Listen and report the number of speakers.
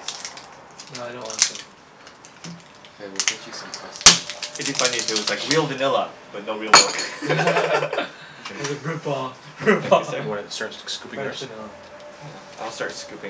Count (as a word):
four